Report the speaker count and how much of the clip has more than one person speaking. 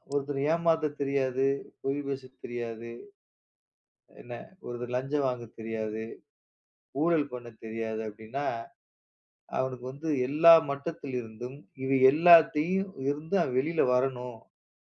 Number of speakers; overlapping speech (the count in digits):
1, no overlap